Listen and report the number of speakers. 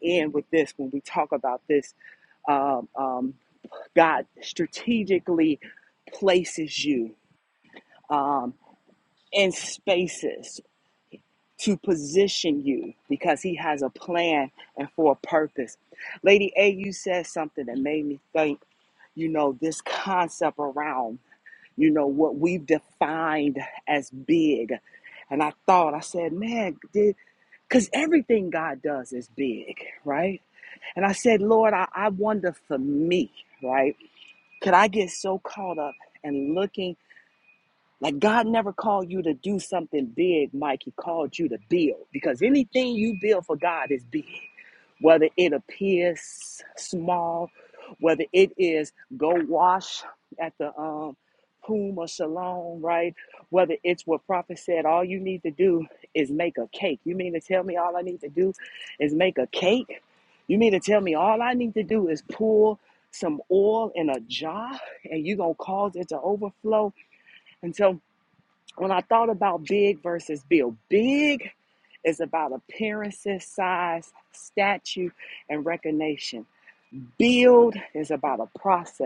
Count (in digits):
1